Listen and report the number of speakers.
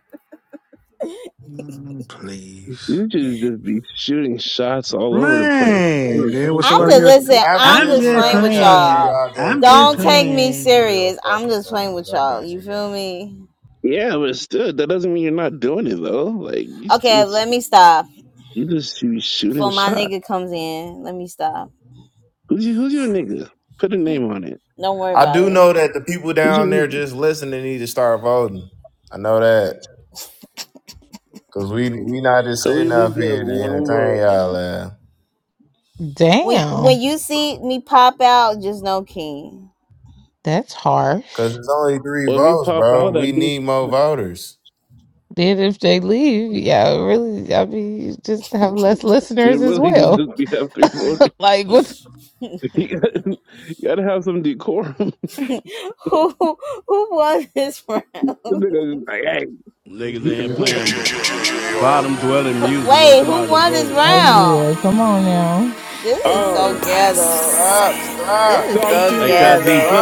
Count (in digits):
7